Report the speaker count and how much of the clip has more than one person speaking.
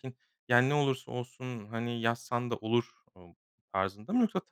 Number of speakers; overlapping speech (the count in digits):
1, no overlap